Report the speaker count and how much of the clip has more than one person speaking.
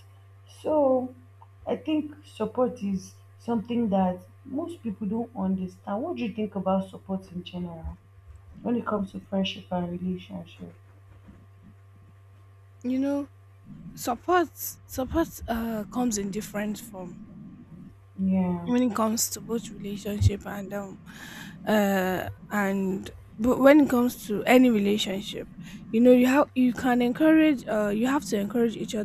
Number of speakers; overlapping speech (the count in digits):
2, under 1%